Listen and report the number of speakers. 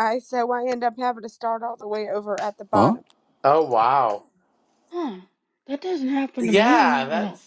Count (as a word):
three